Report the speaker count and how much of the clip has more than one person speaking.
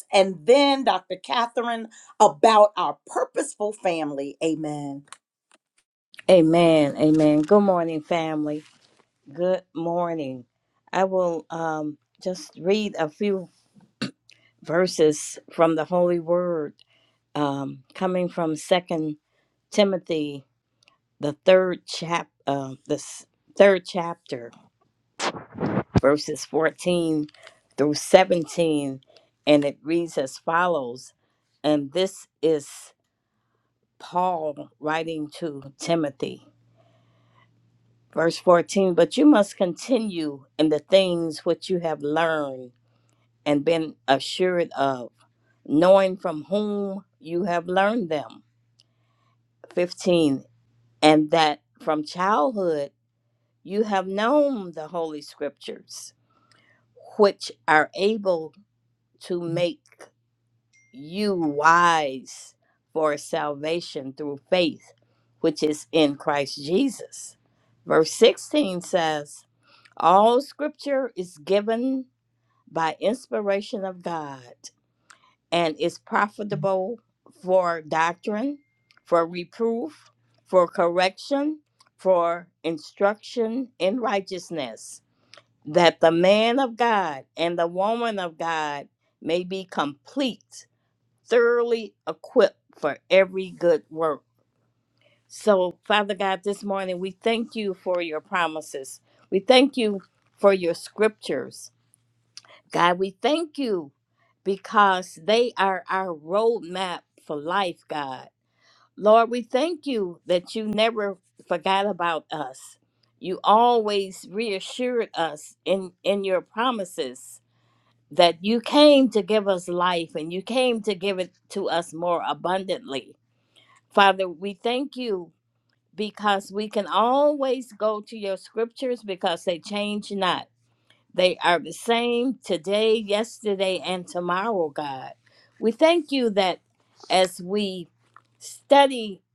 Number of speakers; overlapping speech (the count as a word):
two, no overlap